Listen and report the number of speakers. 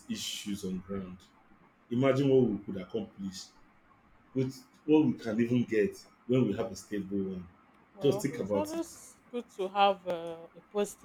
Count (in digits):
2